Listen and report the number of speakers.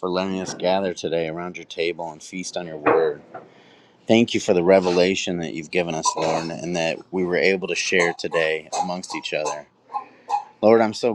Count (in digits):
1